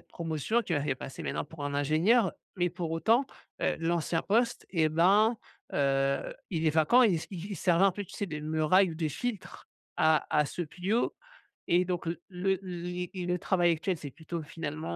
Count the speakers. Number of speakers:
one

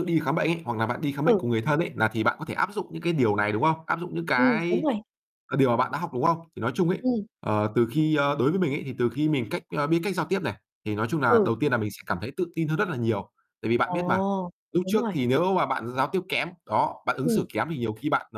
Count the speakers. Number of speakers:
two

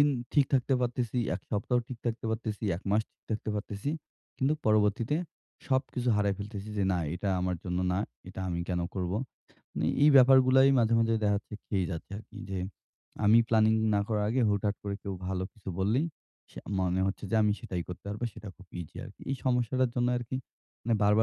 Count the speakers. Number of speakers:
one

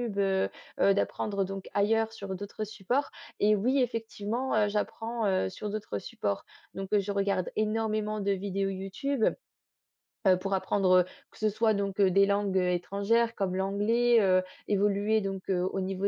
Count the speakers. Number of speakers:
one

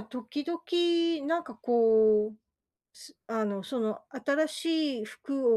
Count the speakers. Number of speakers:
one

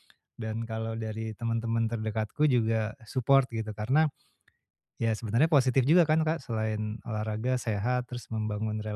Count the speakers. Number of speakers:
one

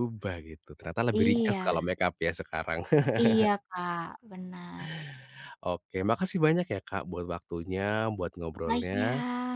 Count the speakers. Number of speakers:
two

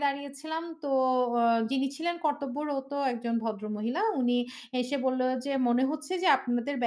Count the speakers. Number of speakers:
one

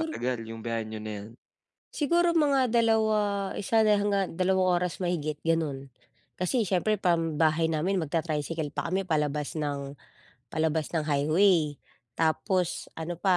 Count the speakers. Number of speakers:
two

